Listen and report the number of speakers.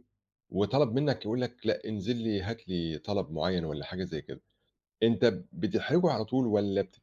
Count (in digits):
1